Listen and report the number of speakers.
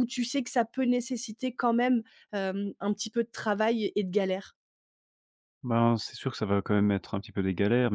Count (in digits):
2